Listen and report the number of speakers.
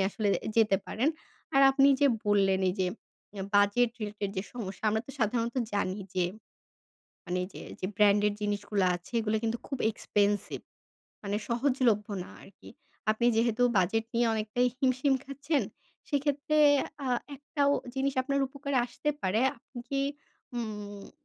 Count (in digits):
1